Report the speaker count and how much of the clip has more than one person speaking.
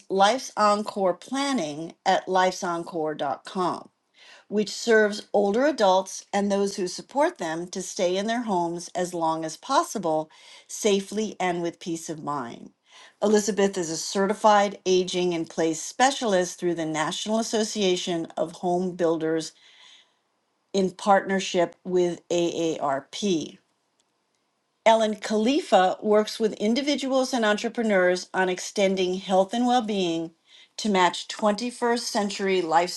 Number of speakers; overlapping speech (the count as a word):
one, no overlap